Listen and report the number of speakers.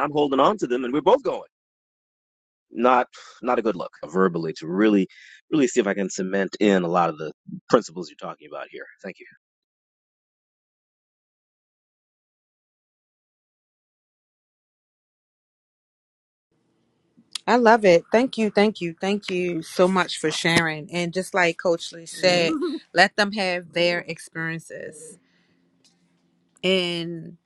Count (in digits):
2